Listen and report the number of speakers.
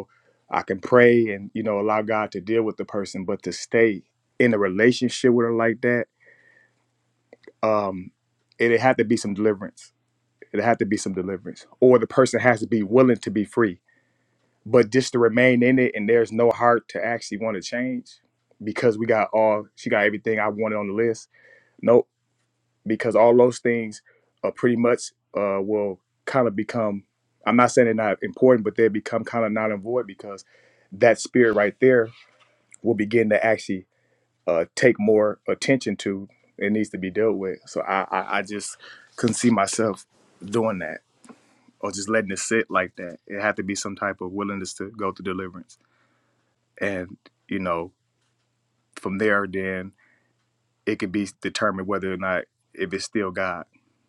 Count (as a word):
one